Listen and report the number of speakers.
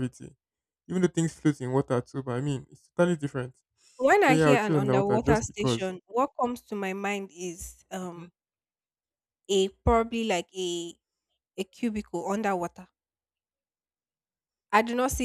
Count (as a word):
two